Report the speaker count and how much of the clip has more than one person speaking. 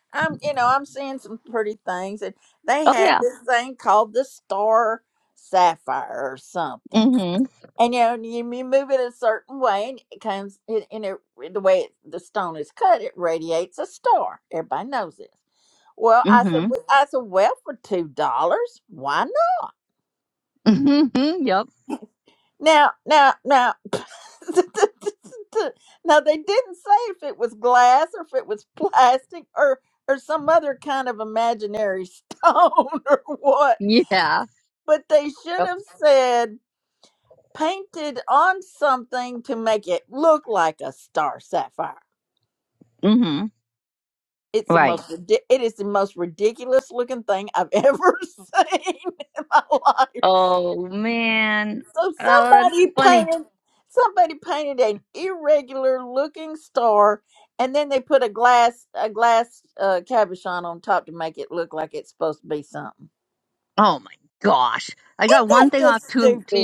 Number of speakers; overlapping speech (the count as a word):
two, about 5%